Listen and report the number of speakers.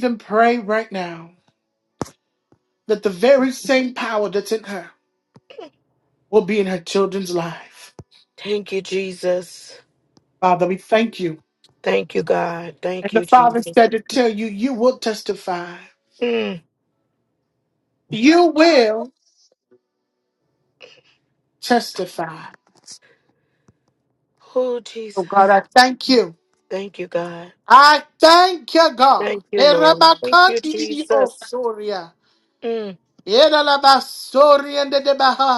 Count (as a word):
two